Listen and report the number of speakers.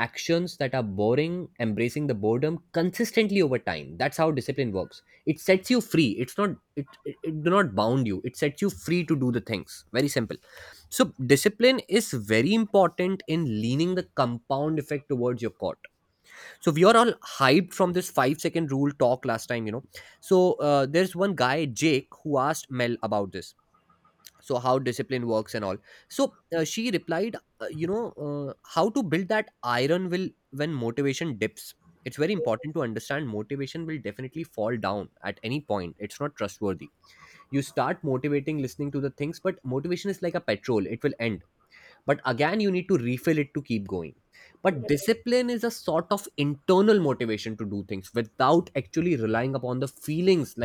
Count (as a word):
one